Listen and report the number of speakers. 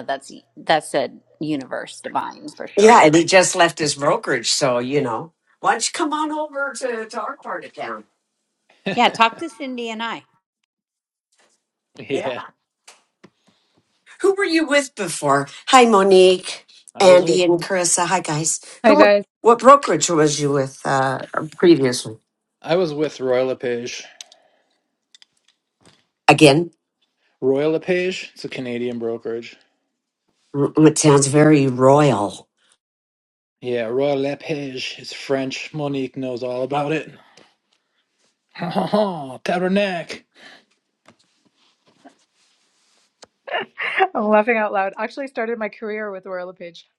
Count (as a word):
four